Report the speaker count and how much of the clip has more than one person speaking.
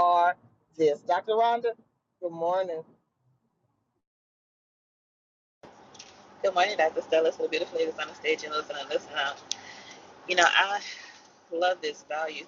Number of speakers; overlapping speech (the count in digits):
2, no overlap